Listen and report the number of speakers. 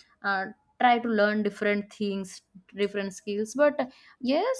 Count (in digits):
1